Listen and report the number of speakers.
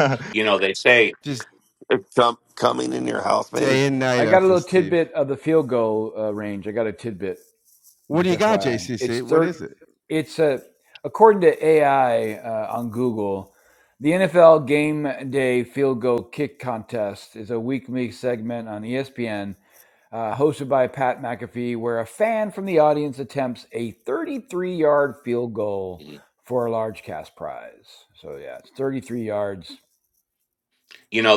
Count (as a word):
four